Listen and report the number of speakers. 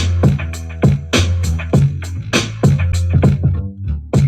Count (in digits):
0